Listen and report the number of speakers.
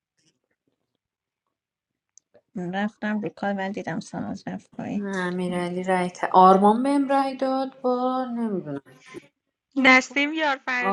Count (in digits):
3